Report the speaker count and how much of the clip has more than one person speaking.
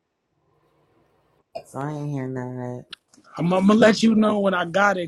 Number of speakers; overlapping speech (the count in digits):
2, no overlap